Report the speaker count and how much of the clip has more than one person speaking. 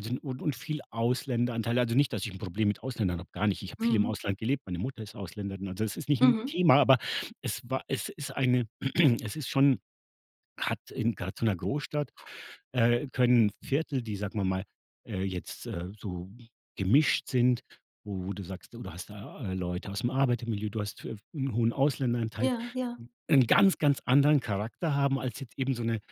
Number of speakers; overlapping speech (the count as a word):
two, about 3%